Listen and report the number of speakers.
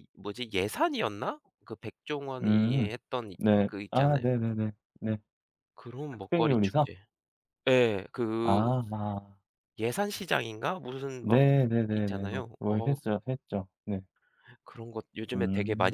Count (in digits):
2